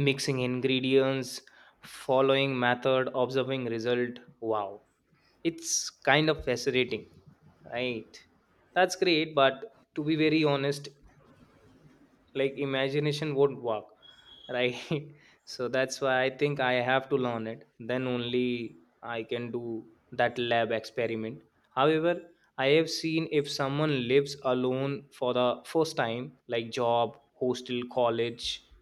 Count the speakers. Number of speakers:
1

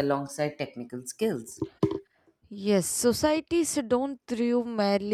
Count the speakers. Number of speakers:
2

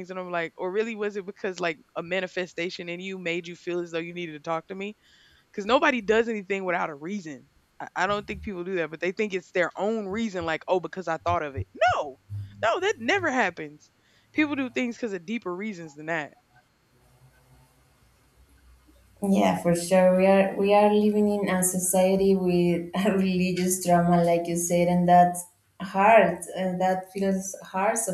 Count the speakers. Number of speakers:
2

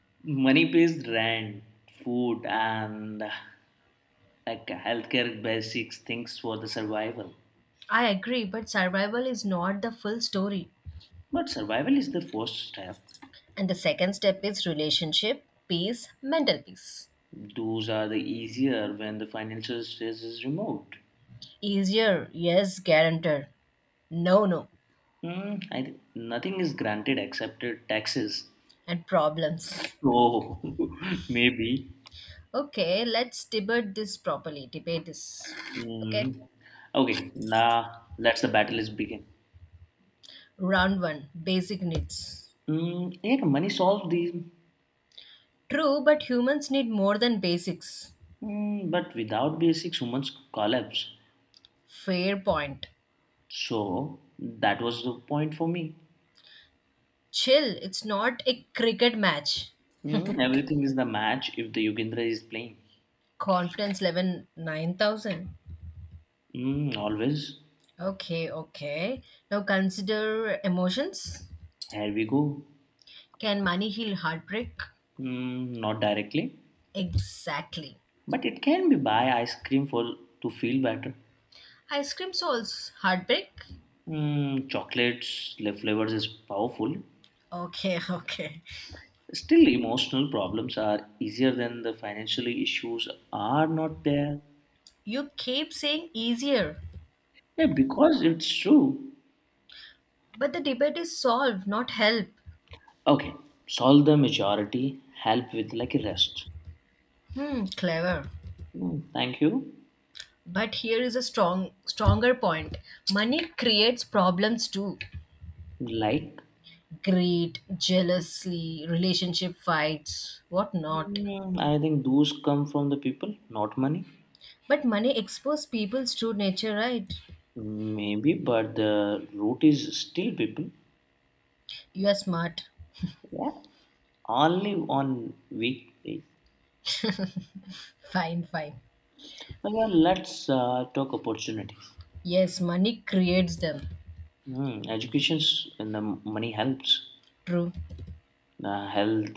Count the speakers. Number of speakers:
2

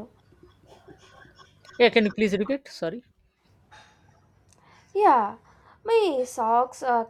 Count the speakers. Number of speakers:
2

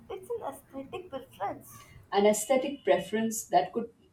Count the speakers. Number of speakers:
2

